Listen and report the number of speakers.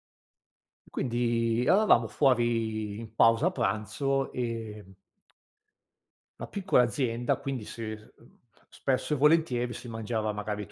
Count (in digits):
1